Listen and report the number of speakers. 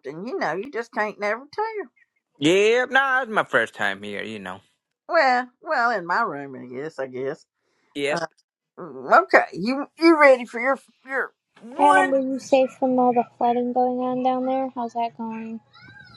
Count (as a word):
three